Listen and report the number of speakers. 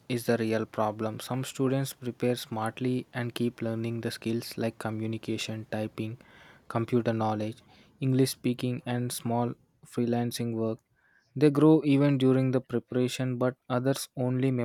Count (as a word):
one